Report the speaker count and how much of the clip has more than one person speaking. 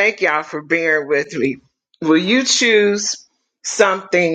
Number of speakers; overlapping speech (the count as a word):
one, no overlap